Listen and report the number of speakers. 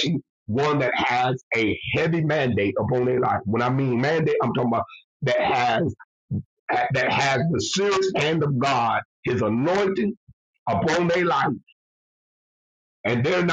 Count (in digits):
1